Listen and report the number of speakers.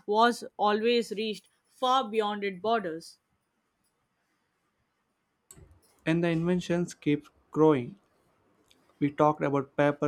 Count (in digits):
2